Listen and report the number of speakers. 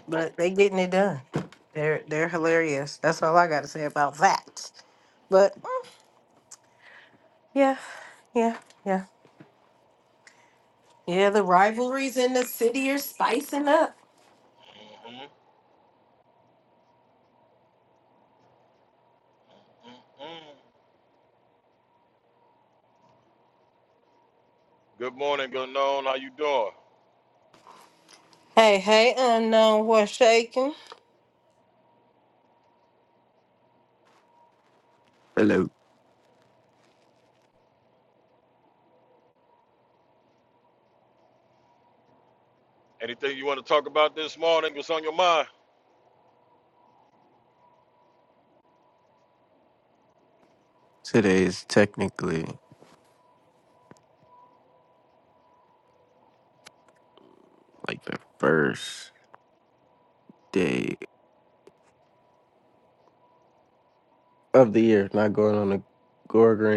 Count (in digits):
3